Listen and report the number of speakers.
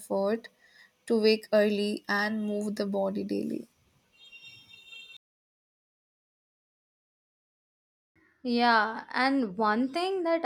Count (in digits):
2